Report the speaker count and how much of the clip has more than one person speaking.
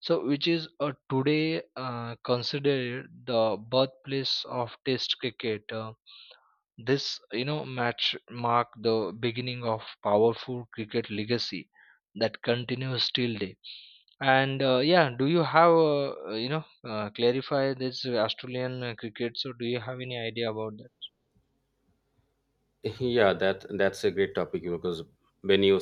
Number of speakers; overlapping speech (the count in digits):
2, no overlap